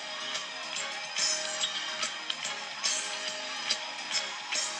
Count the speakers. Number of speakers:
0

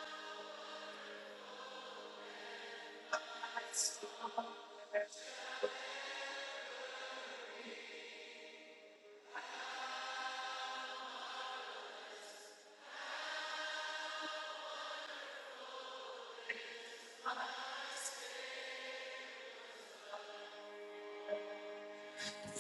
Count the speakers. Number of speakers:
0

